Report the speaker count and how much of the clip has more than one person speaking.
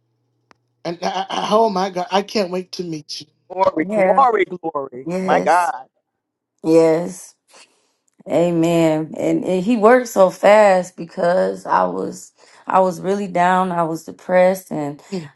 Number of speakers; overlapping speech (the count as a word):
three, about 5%